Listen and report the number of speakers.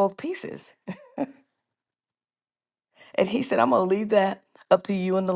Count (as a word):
one